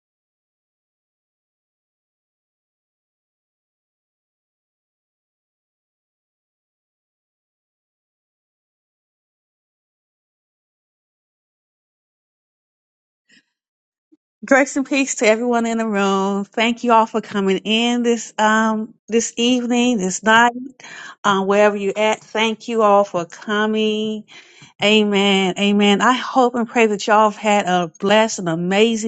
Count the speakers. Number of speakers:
1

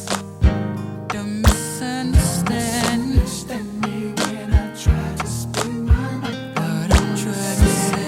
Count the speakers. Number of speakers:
0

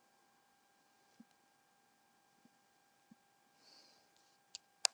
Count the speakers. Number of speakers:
0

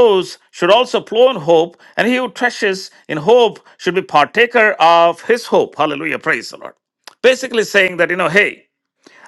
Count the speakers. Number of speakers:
1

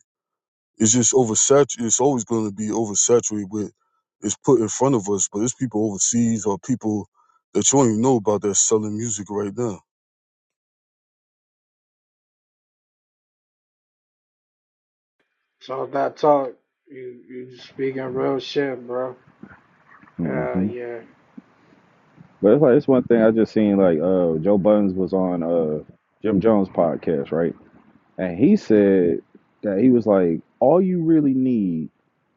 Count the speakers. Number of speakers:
3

